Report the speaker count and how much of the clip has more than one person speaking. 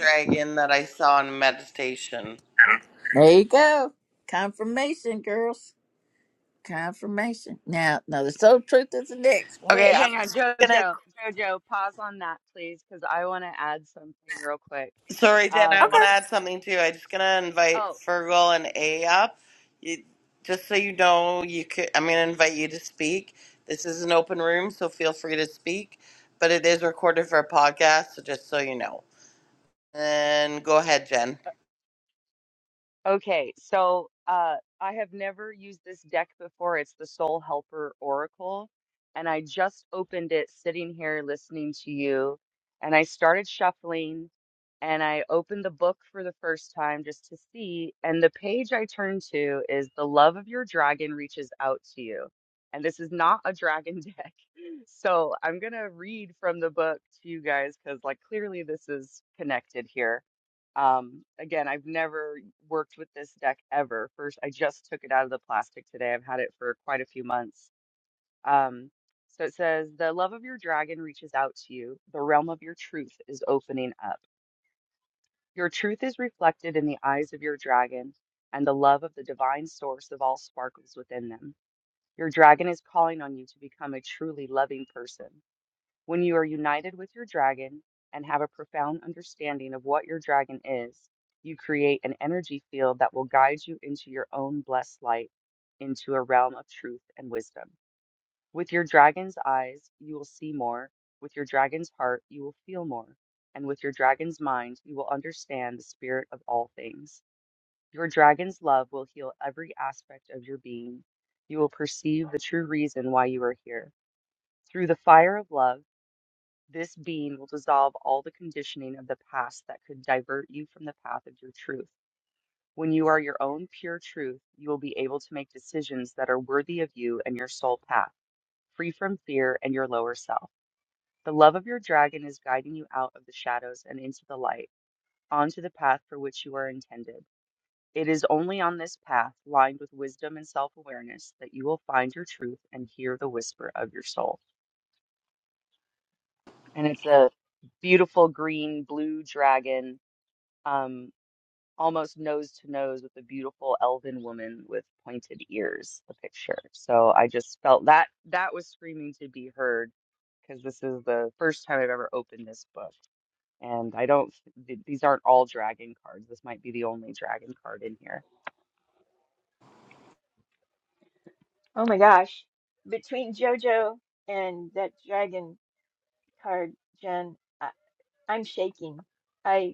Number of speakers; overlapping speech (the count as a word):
four, about 1%